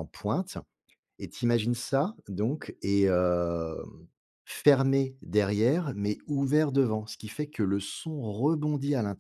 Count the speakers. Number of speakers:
one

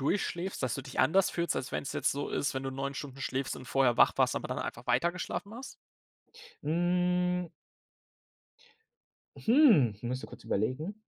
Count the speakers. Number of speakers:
two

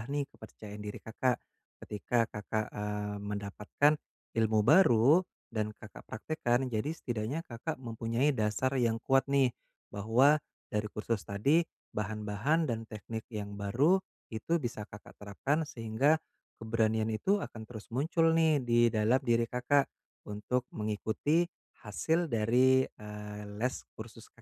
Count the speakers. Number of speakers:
one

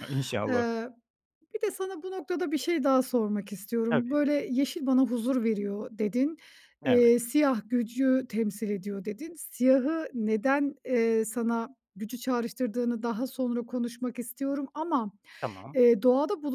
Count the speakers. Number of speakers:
two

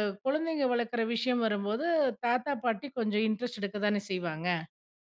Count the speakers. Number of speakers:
one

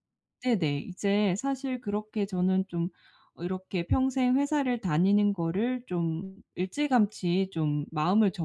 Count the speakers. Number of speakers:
one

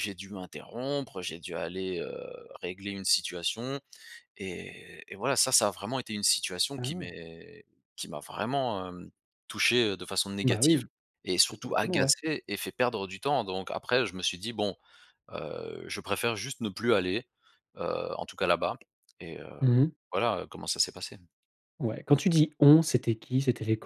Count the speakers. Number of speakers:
two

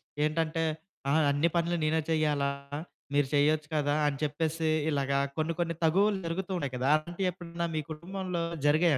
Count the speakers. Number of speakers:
one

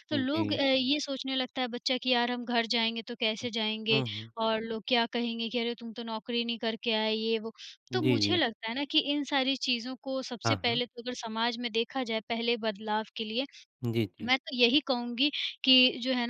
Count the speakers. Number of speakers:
two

